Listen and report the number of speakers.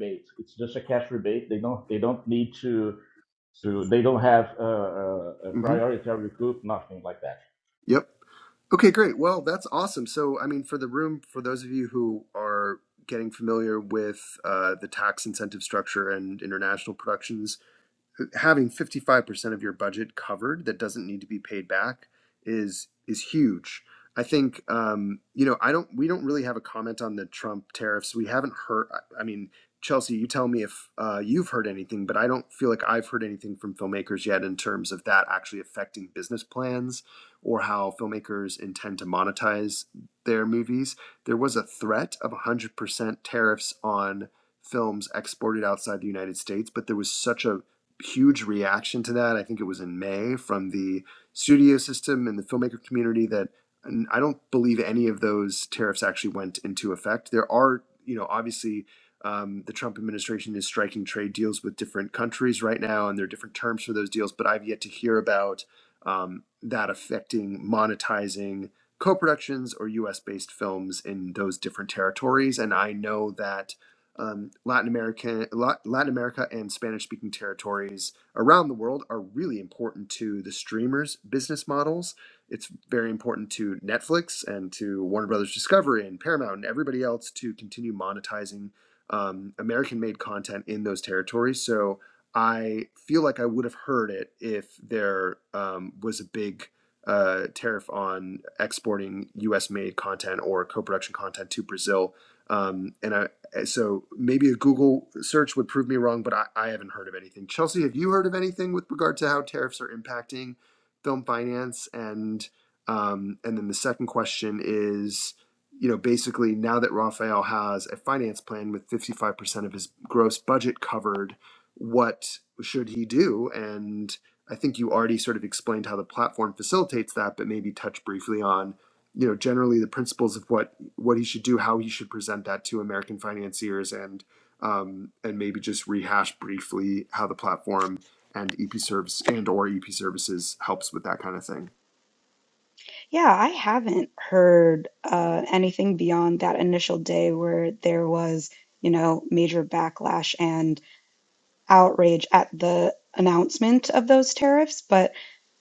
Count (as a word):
three